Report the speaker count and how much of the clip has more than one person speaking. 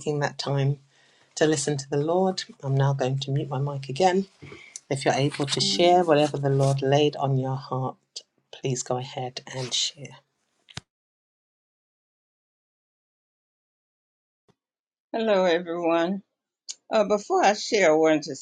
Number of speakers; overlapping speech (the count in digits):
2, no overlap